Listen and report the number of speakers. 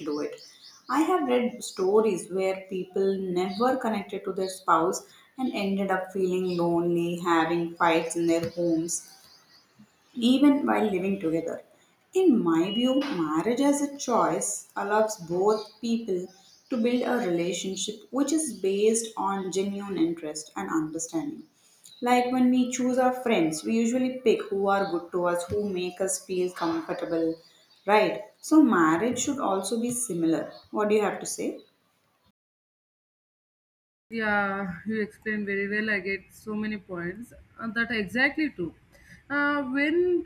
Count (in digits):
2